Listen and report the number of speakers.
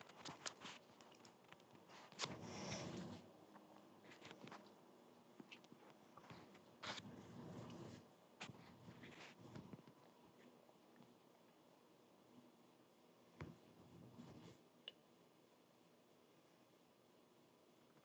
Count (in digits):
0